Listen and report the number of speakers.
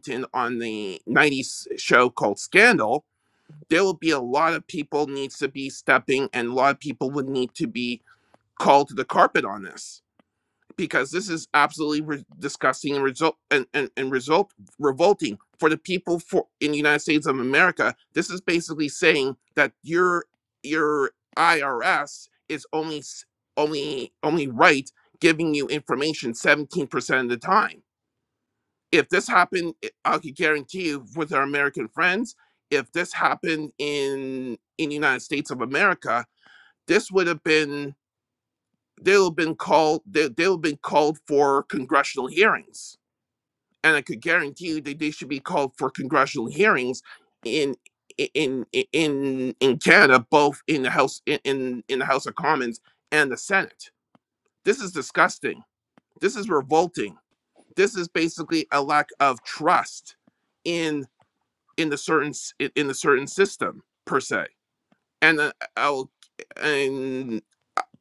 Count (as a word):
one